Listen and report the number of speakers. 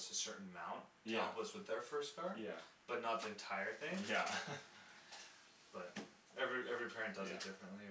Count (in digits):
2